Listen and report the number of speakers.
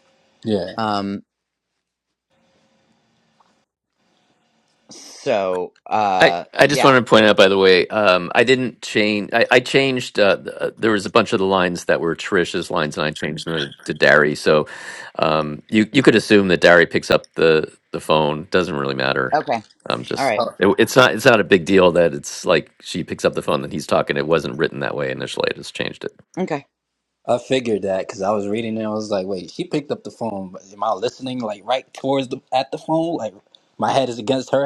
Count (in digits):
3